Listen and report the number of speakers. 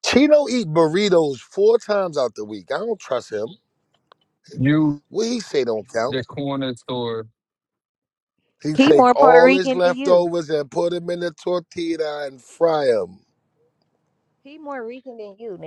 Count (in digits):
3